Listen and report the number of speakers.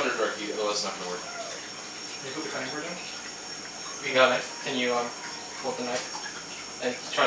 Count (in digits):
3